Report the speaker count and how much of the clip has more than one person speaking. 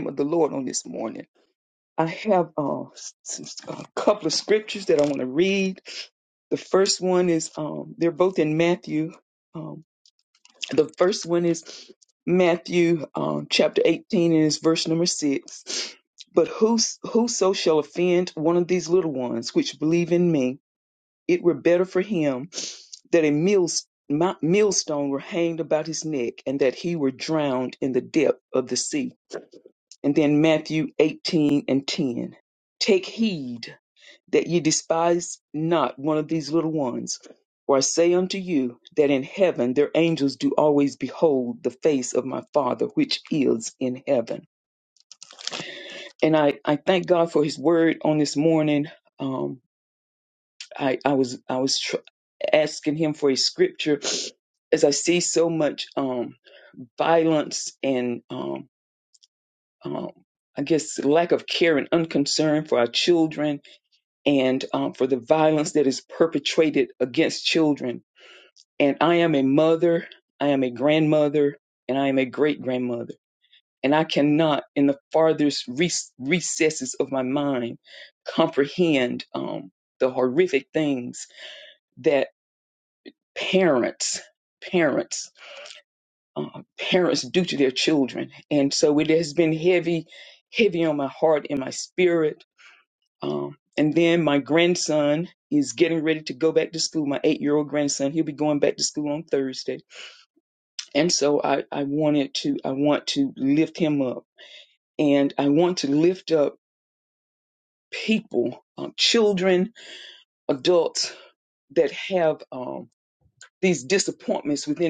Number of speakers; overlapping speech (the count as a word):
one, no overlap